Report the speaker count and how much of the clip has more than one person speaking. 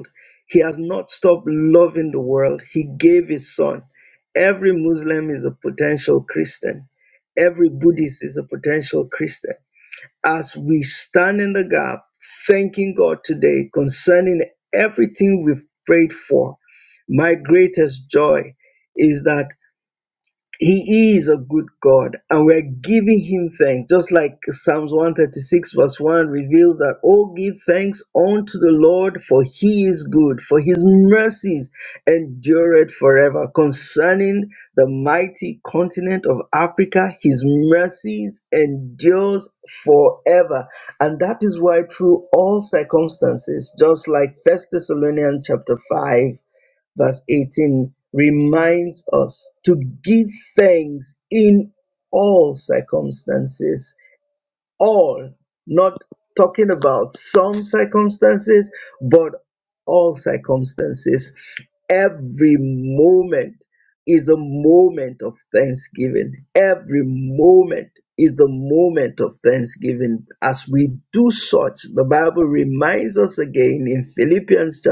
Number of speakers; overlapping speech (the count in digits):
1, no overlap